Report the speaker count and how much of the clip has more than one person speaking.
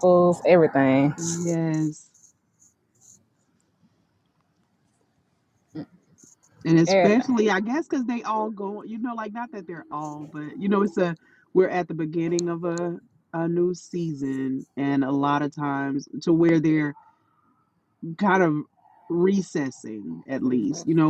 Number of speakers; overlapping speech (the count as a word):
two, about 2%